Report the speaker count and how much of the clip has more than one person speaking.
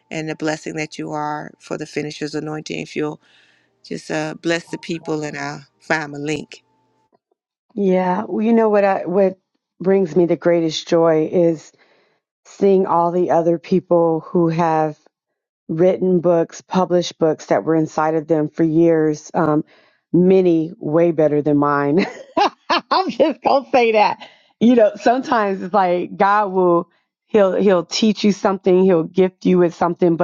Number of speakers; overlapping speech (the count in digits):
2, no overlap